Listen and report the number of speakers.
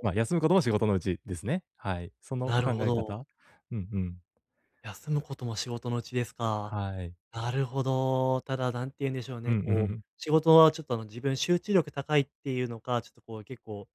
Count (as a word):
two